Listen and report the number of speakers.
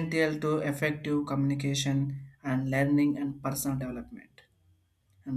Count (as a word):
one